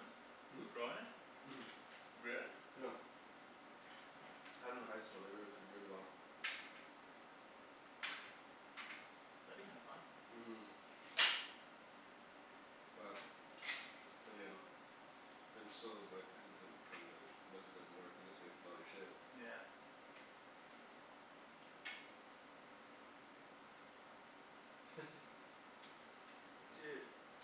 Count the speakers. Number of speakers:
2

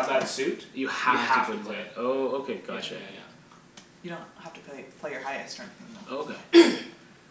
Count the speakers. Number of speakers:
3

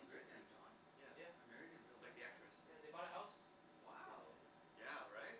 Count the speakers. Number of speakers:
3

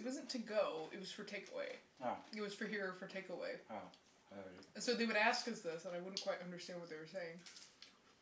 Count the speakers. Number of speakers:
2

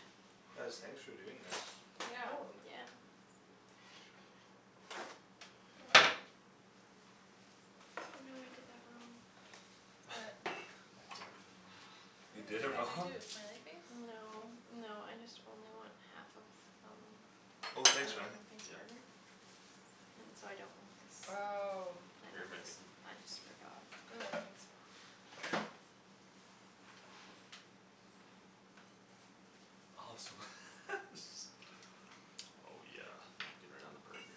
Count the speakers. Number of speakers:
4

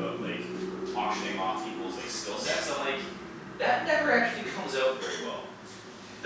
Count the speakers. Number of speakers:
1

